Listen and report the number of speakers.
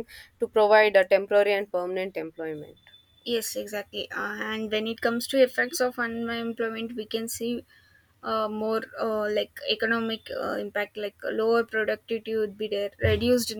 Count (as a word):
two